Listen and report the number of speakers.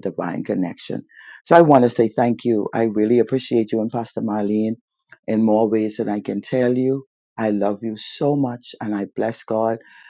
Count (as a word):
one